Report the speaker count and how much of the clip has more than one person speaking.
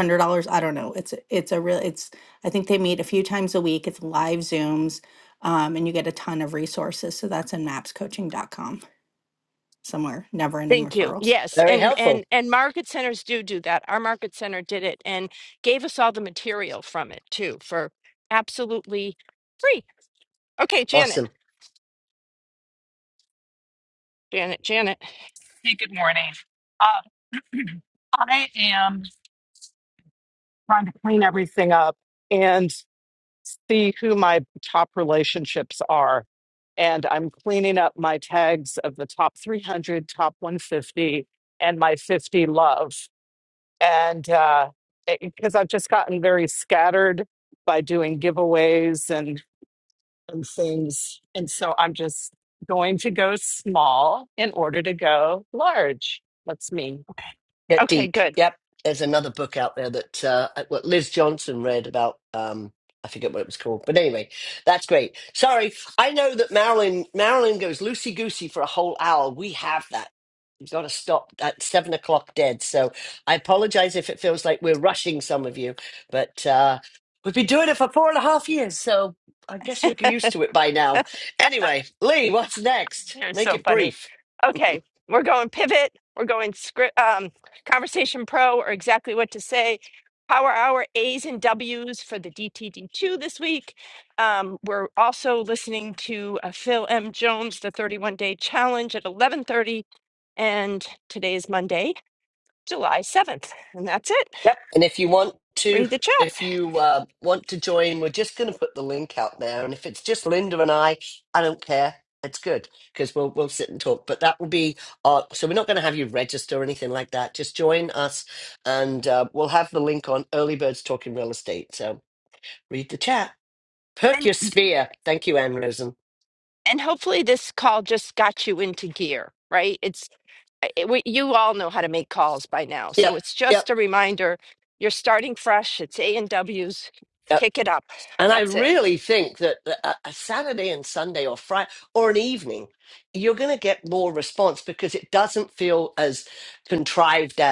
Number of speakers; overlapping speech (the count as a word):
four, about 3%